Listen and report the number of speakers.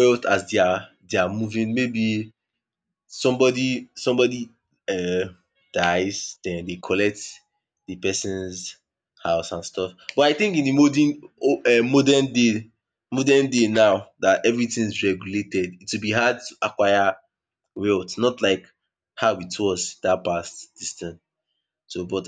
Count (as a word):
one